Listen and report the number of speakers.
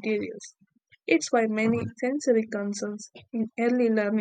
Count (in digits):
1